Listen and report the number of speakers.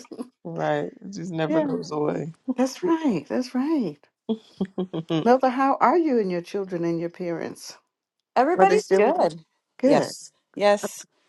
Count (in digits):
3